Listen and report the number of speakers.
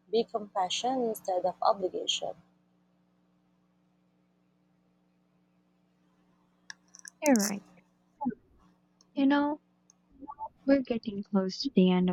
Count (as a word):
two